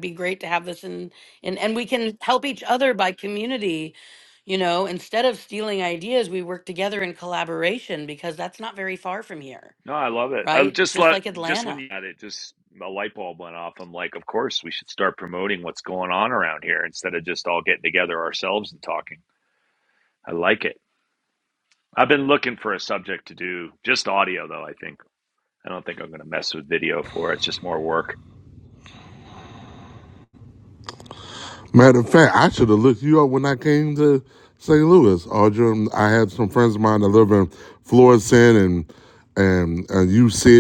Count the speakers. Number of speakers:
3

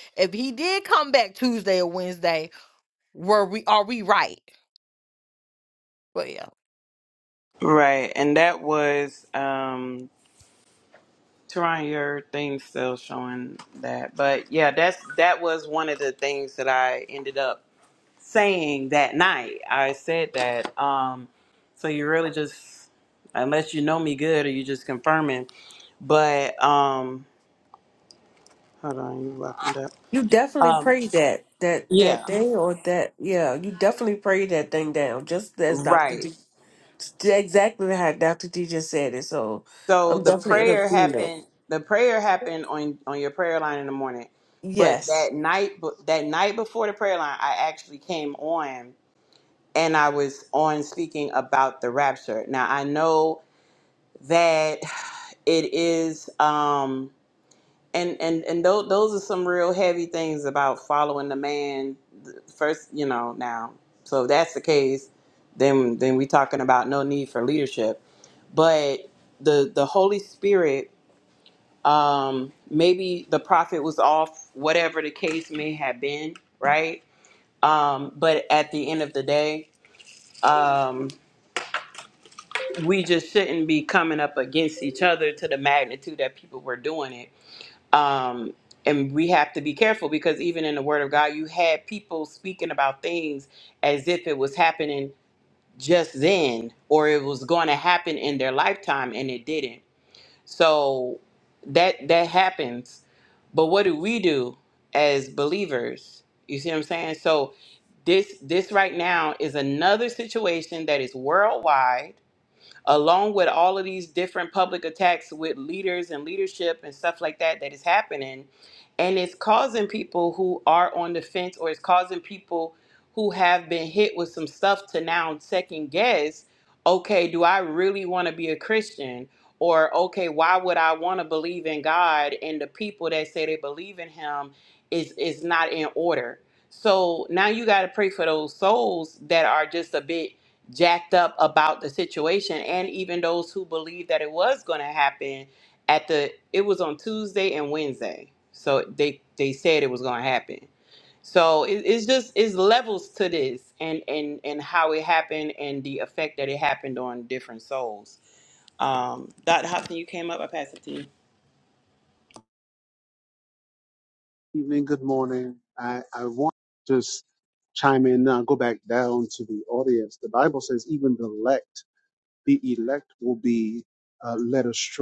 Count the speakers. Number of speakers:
4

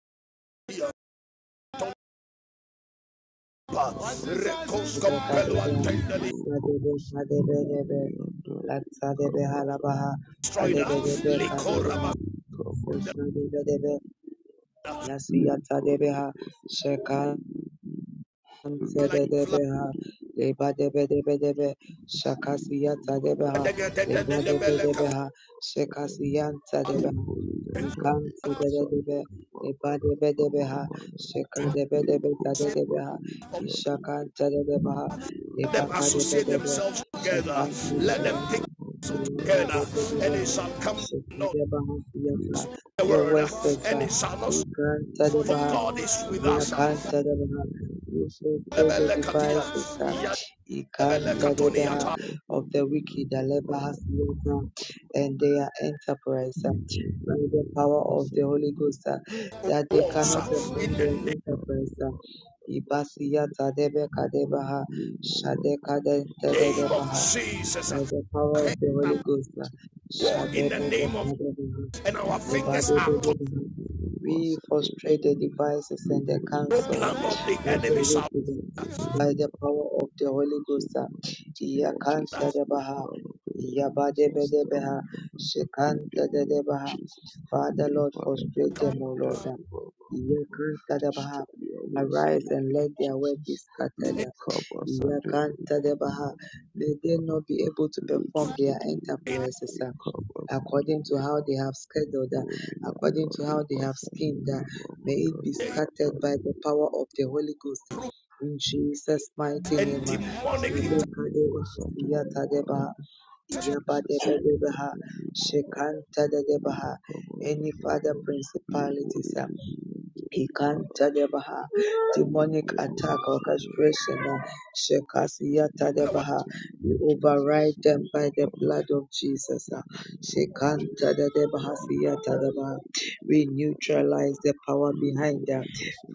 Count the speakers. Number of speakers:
3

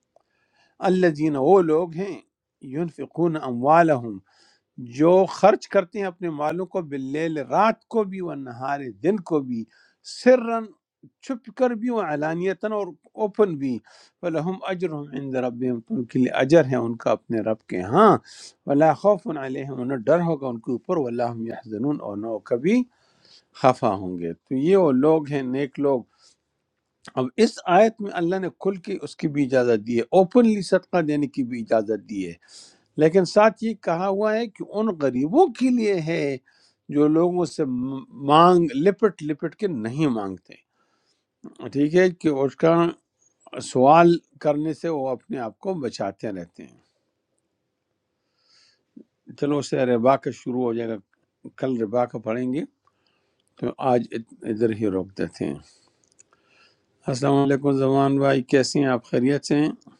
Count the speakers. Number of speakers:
1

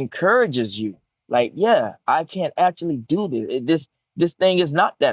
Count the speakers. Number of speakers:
1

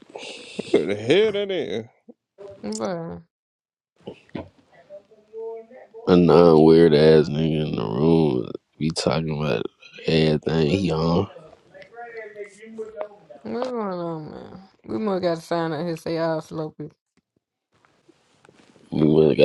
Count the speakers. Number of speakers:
3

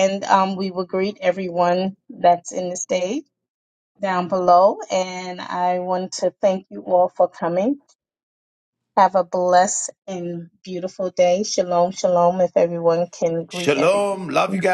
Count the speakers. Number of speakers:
2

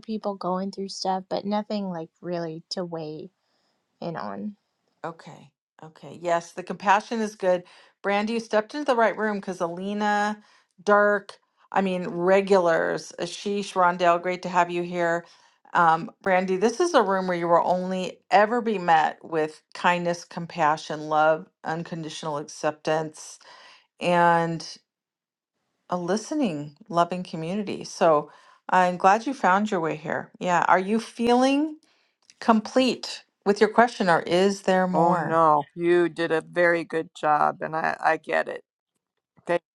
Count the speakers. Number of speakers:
3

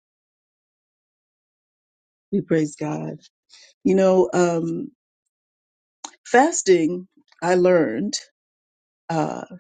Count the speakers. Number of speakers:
1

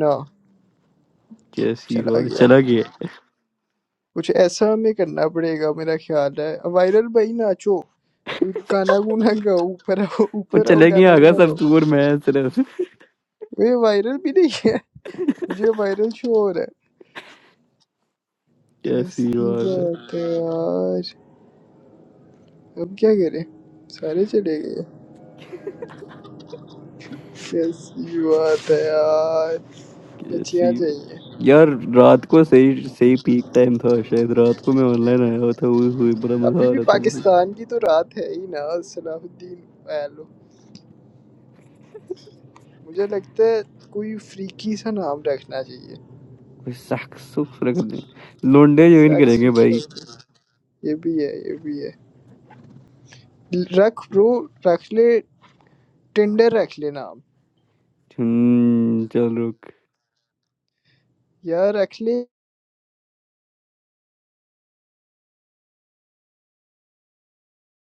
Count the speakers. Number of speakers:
2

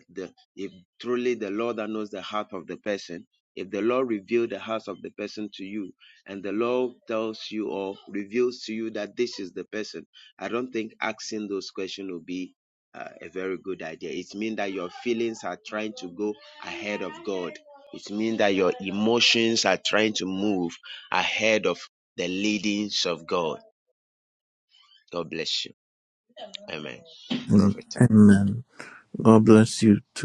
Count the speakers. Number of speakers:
2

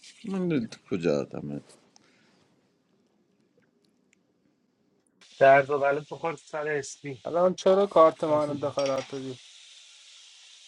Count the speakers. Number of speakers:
3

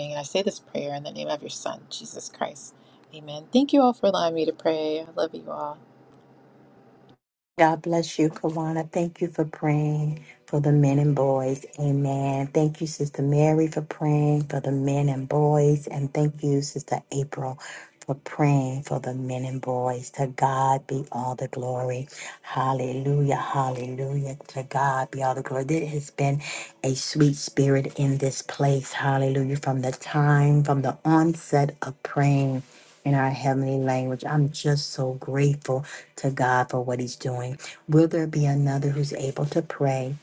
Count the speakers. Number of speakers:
2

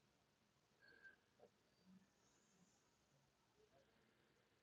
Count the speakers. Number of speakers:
0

